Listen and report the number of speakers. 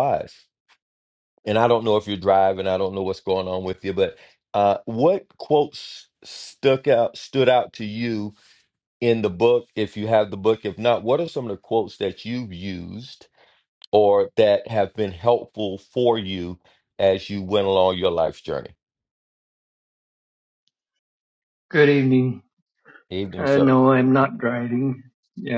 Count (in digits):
2